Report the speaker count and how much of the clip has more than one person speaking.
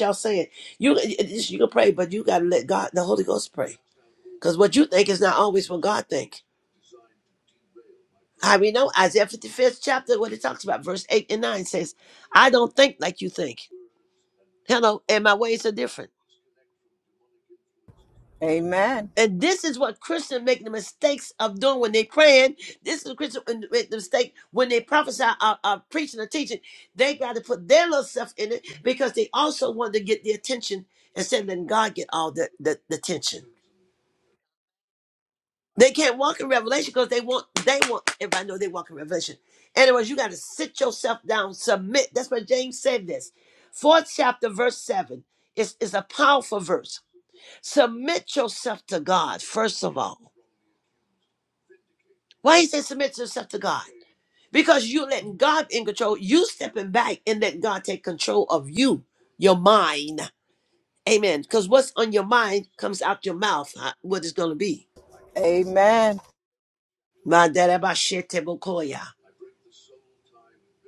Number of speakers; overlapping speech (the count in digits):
2, no overlap